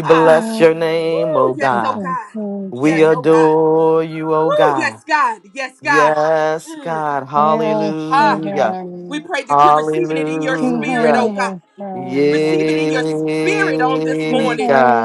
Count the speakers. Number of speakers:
3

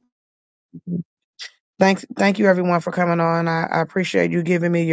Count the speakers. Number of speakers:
1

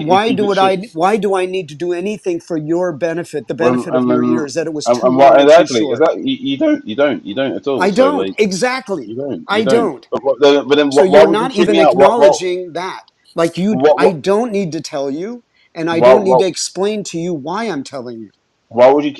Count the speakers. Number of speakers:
2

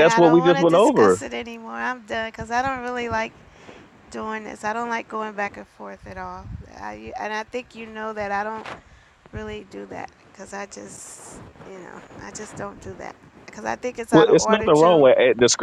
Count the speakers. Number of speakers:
2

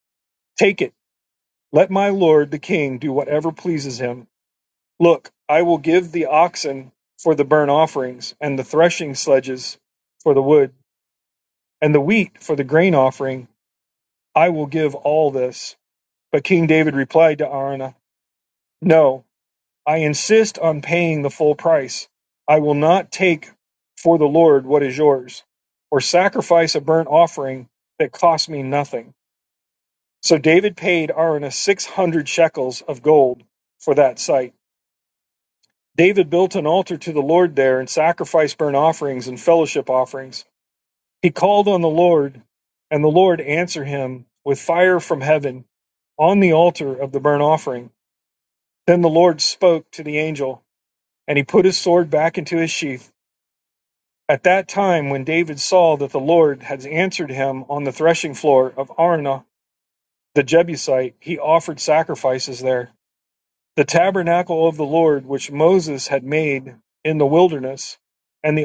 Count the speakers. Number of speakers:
1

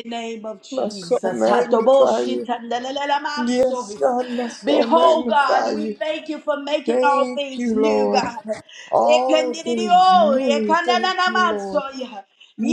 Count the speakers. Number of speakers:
2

